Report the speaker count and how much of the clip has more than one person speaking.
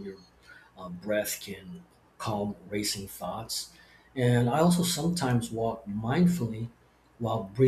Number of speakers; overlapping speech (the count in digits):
1, no overlap